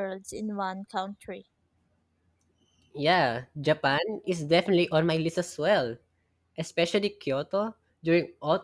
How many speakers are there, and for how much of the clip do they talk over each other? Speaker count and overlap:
2, no overlap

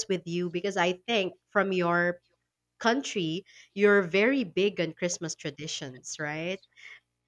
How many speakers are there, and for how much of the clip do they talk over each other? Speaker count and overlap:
1, no overlap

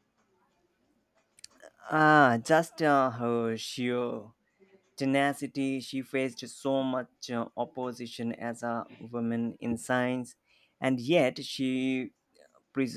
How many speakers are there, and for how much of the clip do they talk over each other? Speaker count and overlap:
1, no overlap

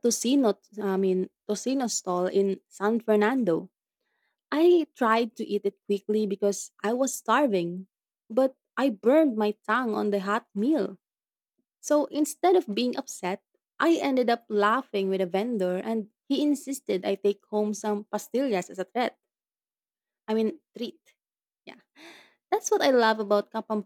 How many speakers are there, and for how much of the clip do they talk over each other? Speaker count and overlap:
1, no overlap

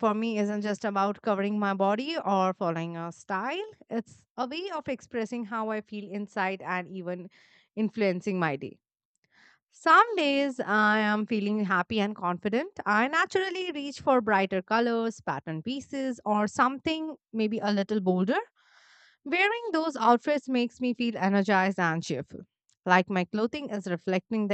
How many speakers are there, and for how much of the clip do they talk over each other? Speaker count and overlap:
1, no overlap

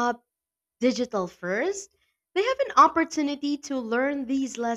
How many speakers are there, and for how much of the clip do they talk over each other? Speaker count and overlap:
1, no overlap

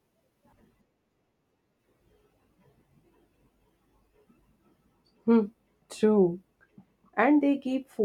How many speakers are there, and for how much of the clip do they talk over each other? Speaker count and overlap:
1, no overlap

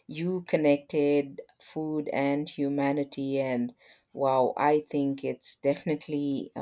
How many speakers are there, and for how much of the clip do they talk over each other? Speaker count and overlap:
1, no overlap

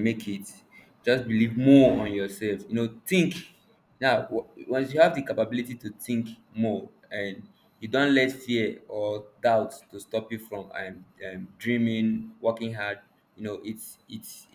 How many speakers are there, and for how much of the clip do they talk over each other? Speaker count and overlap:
1, no overlap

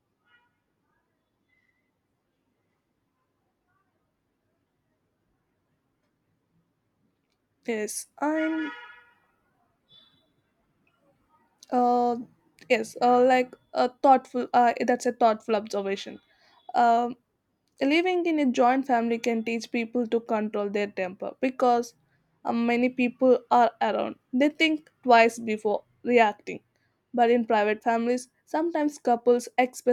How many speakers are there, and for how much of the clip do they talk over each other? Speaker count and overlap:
1, no overlap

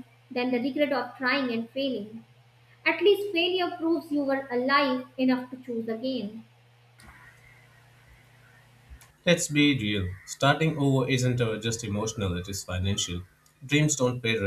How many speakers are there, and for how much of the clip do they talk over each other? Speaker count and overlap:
2, no overlap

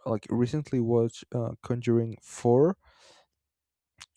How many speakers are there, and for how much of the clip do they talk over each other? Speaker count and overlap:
1, no overlap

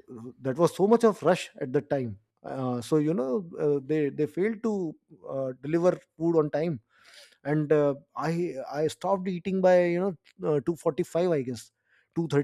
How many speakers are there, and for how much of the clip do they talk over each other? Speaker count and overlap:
1, no overlap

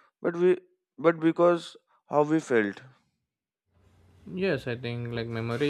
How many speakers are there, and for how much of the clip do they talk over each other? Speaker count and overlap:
2, no overlap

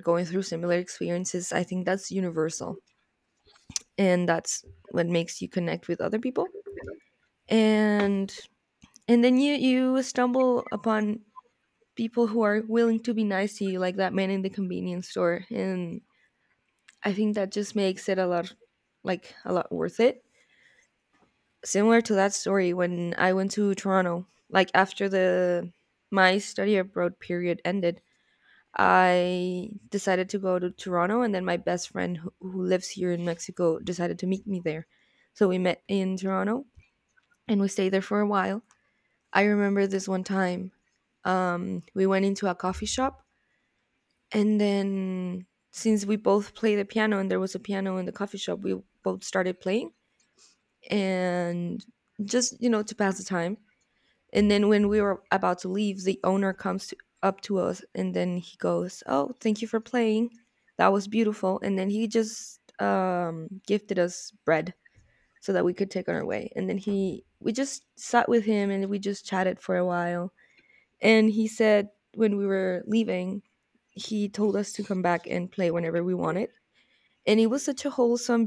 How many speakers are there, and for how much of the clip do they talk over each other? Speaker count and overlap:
1, no overlap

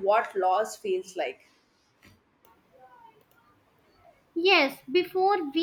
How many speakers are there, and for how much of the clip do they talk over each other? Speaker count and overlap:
2, no overlap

